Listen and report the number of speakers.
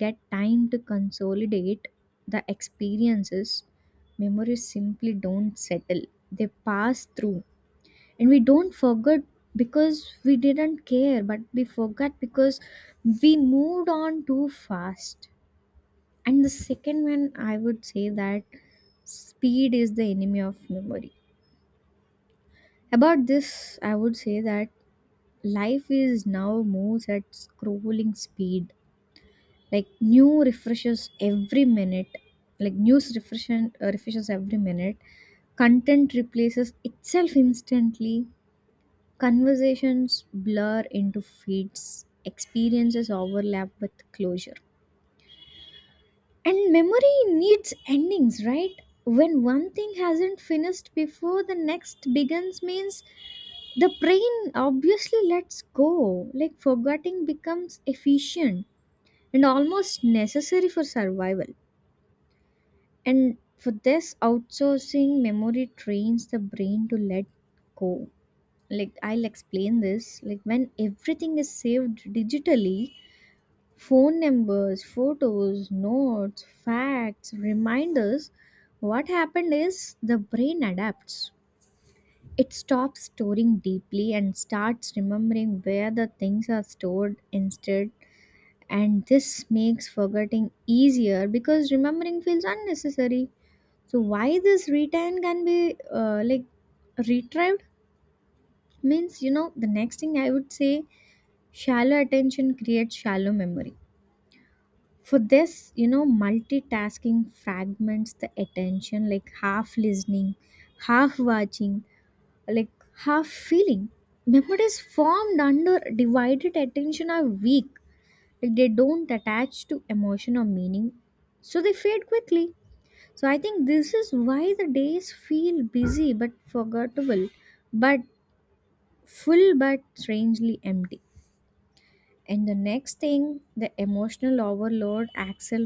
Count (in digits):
1